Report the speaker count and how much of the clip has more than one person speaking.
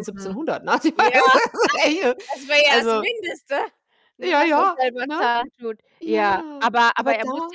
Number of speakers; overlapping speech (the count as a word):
two, about 43%